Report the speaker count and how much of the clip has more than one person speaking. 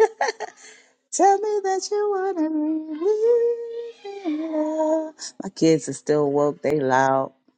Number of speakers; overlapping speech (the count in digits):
1, no overlap